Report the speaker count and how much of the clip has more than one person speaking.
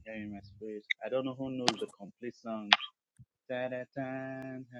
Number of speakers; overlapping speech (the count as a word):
one, no overlap